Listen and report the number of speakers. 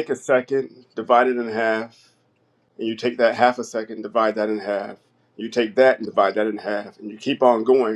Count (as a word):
one